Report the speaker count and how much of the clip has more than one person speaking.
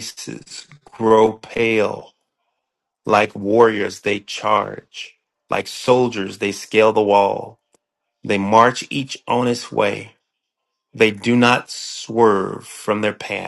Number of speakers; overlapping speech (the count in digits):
1, no overlap